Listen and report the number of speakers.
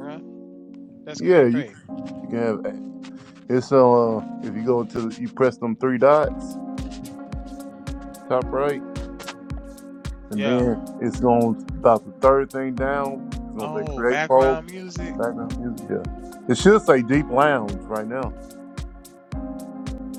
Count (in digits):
2